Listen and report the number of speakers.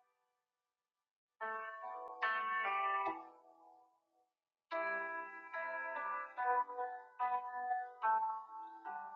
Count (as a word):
zero